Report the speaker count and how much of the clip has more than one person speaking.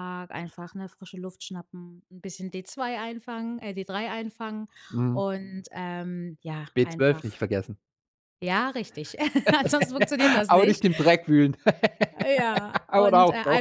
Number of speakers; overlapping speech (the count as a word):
two, about 13%